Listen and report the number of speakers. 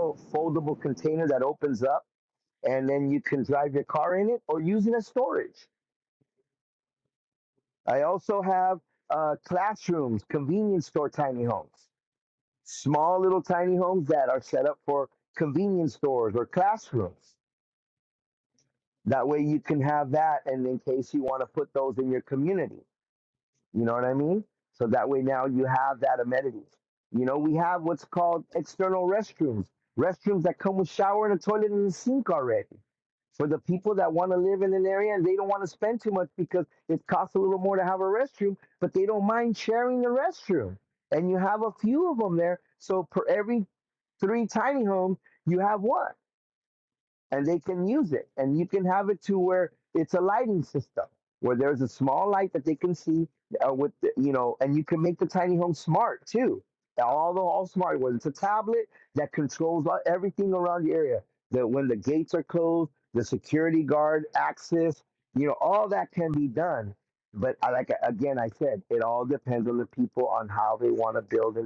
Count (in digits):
1